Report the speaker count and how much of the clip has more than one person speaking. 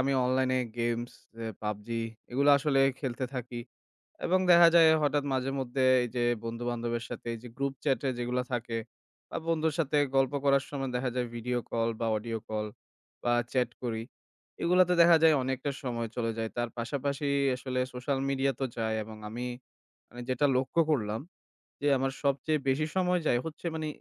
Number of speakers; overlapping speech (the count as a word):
one, no overlap